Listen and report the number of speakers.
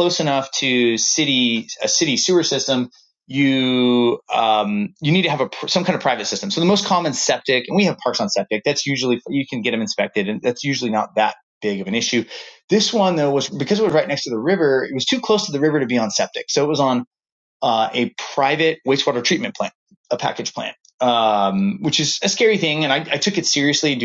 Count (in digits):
1